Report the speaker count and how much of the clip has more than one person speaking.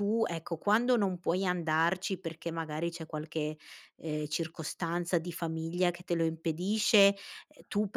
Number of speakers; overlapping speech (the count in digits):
1, no overlap